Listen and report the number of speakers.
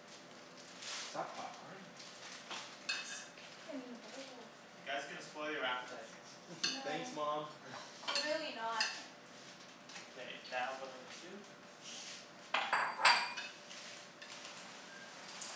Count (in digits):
3